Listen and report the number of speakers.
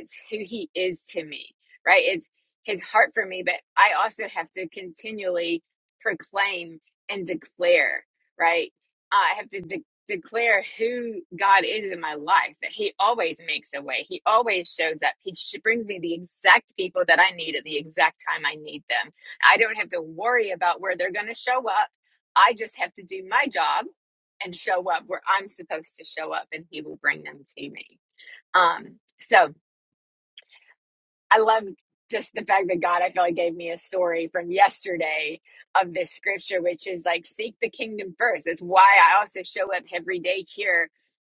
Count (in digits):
1